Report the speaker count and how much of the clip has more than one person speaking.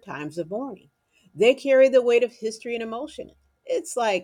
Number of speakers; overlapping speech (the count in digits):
1, no overlap